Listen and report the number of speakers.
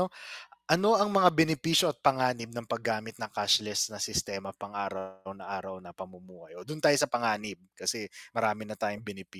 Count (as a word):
one